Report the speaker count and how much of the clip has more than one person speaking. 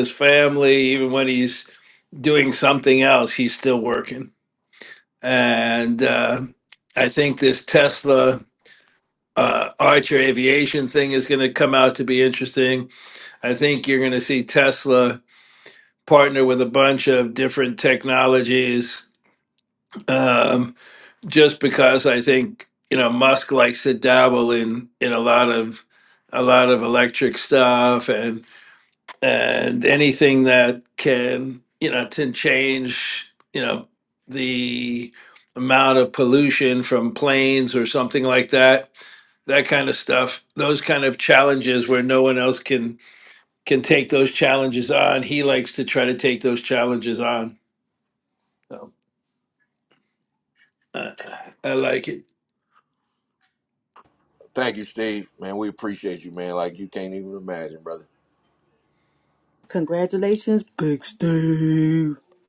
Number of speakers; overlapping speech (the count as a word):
three, no overlap